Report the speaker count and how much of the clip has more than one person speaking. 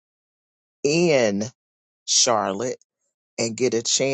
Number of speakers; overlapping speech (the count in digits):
1, no overlap